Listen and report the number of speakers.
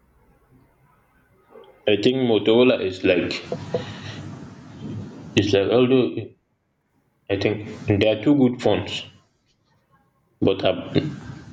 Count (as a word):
one